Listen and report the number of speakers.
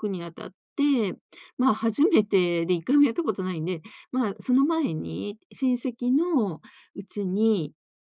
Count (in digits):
1